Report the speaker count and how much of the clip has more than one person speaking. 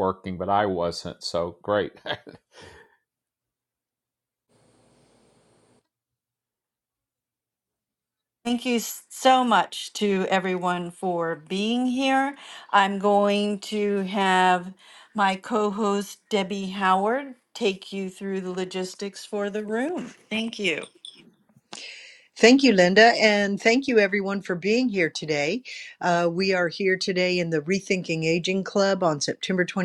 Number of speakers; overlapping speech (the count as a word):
three, no overlap